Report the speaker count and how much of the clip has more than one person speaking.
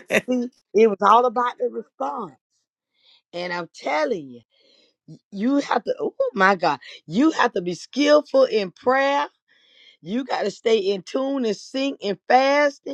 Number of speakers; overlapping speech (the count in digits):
1, no overlap